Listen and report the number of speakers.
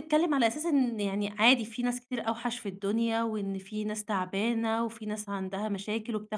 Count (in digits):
1